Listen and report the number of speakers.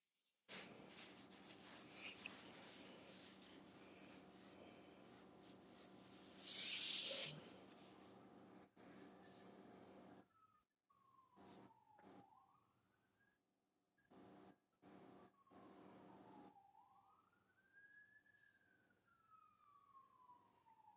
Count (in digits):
0